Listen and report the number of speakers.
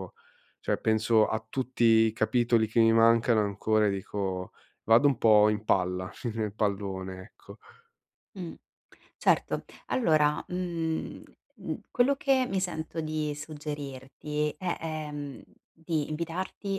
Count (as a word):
two